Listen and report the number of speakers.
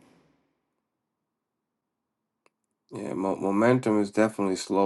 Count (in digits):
1